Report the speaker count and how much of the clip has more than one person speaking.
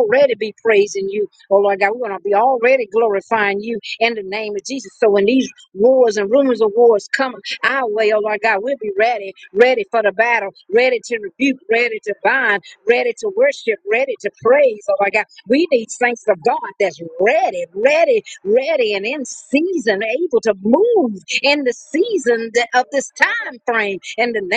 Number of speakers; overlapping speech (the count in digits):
1, no overlap